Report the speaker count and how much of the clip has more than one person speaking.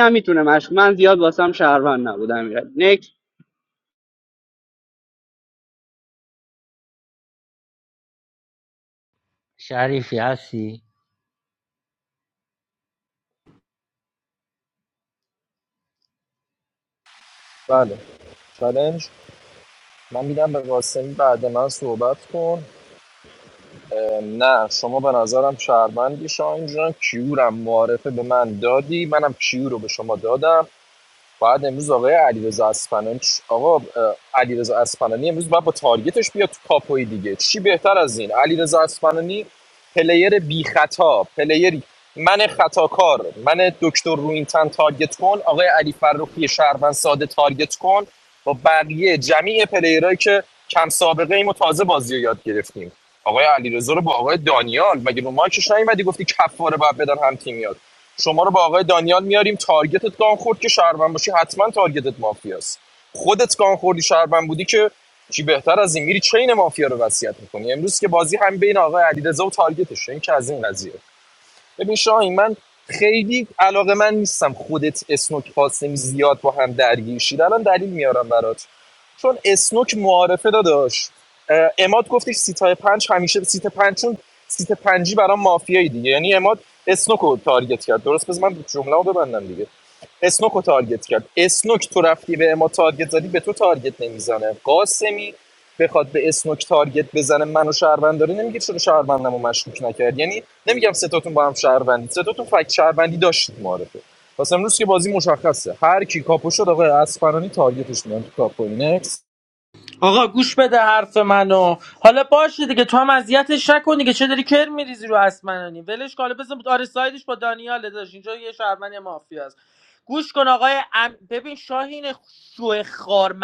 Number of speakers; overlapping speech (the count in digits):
4, no overlap